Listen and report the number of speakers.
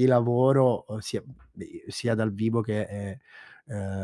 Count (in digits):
1